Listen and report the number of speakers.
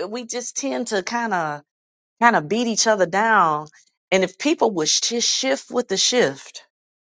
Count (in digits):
1